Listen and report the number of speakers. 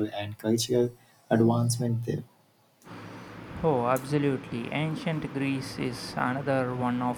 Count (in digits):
2